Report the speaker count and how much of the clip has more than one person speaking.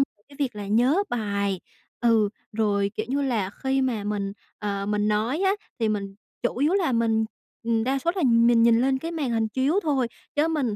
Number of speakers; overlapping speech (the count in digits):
1, no overlap